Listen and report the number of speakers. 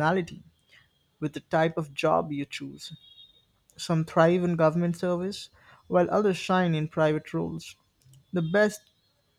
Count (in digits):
1